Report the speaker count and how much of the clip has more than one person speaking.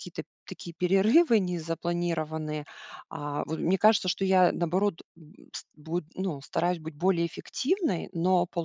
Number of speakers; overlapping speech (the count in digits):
1, no overlap